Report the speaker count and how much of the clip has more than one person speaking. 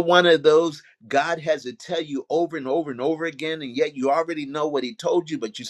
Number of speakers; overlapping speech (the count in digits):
1, no overlap